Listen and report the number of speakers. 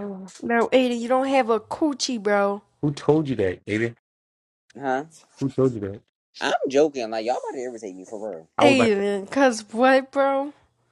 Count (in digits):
3